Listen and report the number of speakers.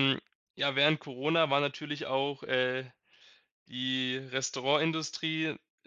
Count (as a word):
one